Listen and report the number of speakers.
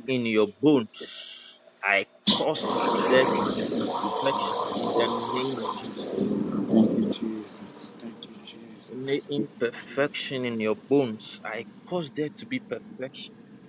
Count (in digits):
2